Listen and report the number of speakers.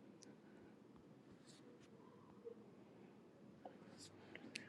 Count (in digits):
0